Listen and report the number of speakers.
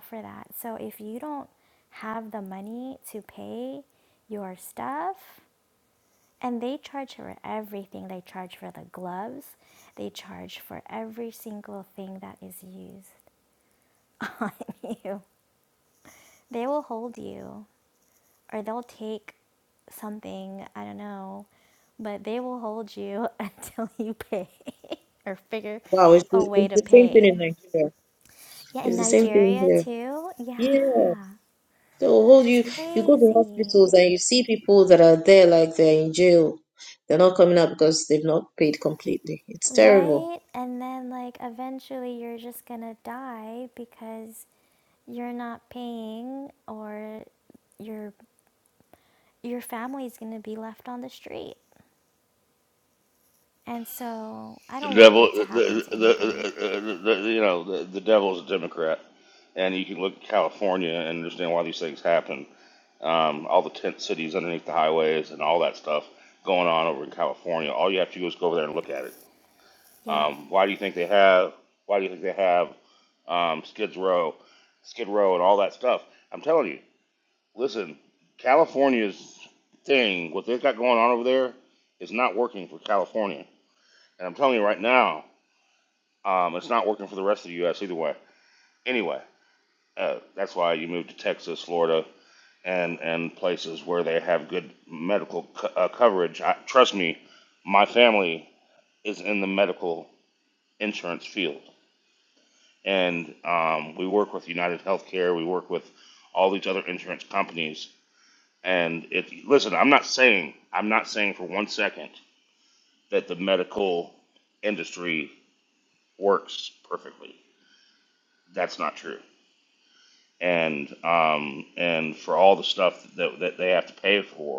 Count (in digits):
3